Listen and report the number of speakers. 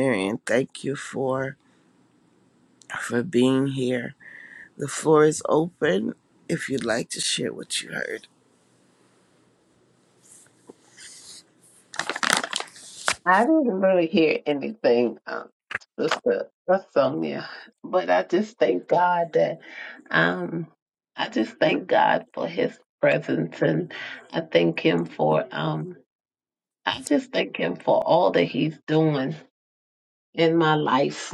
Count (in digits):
2